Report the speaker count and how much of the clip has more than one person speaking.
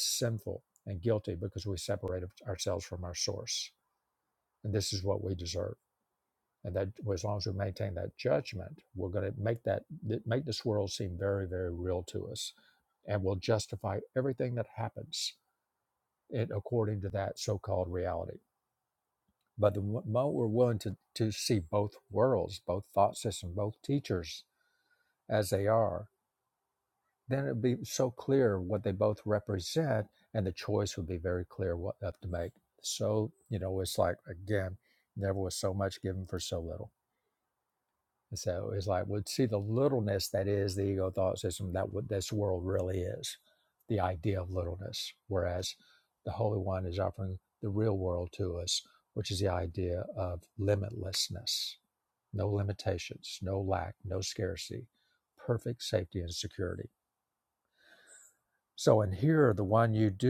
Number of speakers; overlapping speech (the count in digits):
1, no overlap